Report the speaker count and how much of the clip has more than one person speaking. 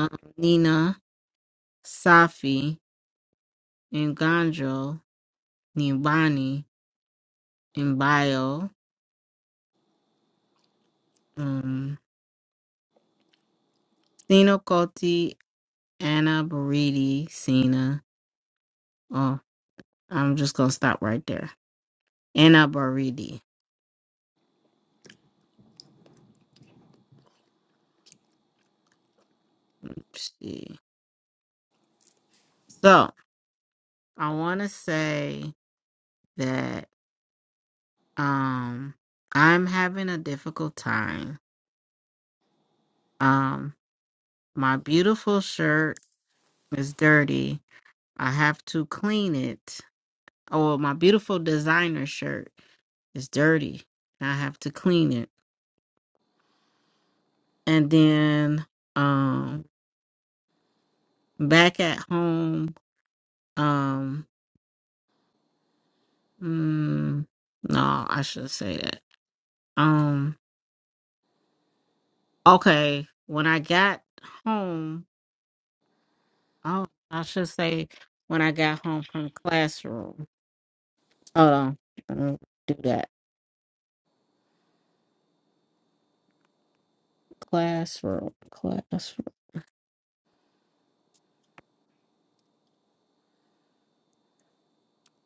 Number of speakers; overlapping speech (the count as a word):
one, no overlap